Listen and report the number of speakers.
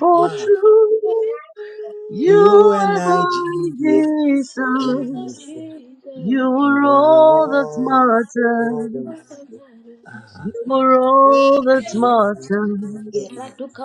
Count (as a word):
three